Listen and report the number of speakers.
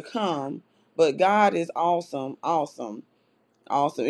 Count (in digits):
1